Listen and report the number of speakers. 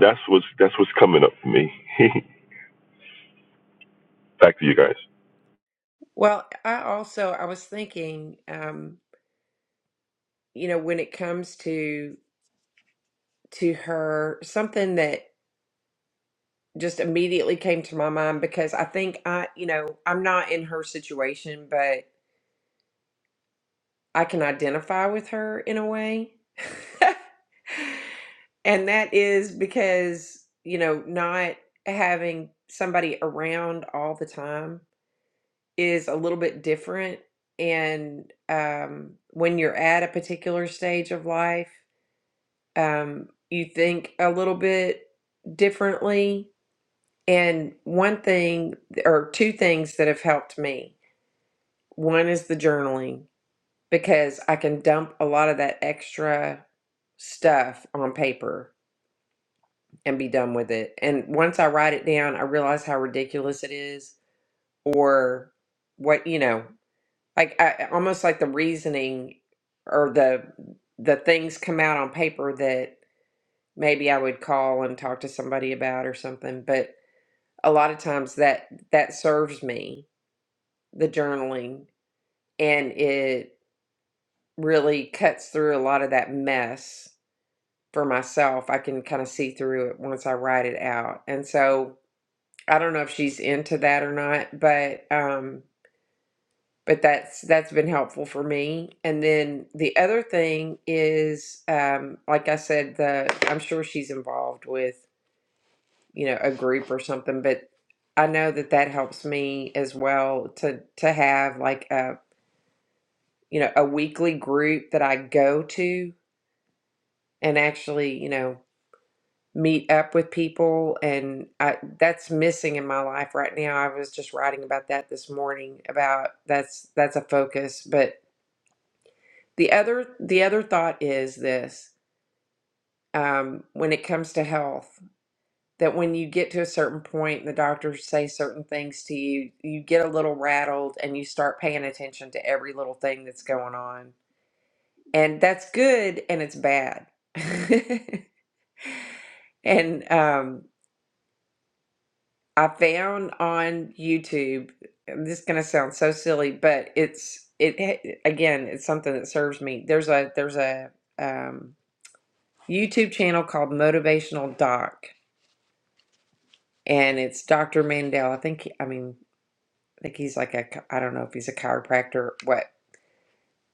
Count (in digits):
2